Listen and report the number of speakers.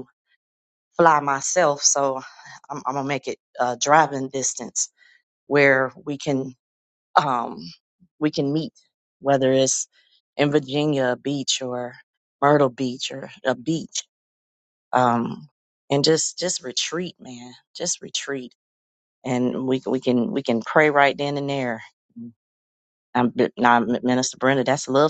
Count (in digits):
1